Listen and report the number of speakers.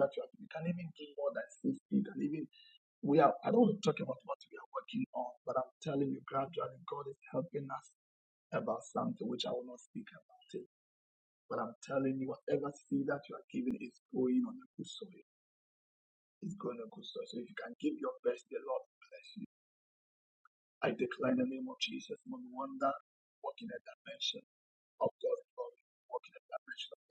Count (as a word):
one